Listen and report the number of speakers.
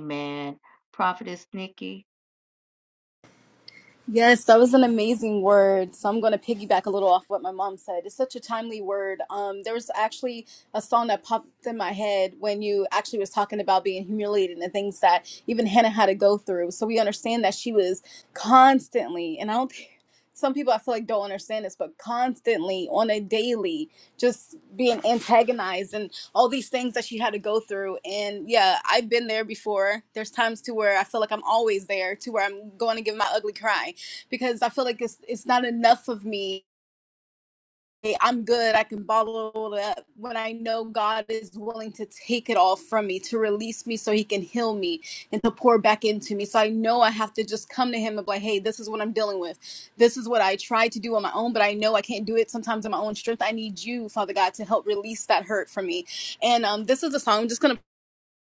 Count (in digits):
2